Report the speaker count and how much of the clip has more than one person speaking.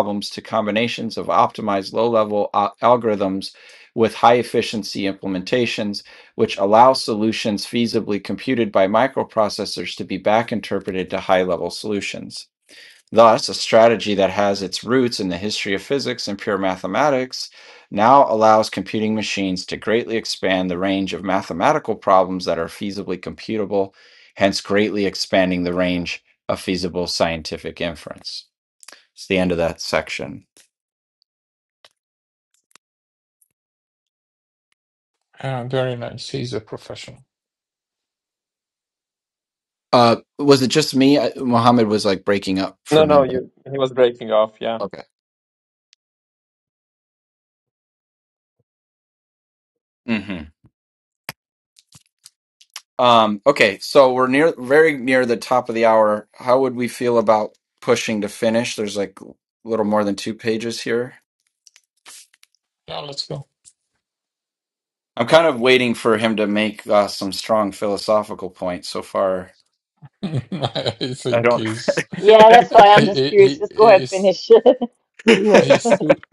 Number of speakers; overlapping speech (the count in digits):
4, about 3%